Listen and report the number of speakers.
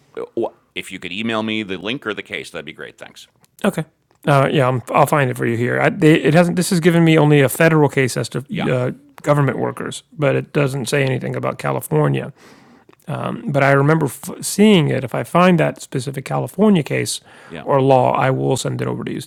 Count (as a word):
two